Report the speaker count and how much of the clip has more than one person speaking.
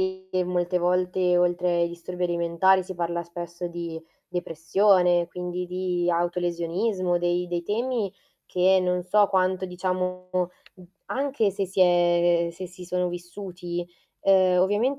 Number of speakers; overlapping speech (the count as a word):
one, no overlap